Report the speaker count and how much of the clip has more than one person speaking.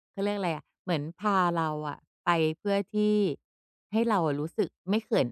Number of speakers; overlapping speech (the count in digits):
1, no overlap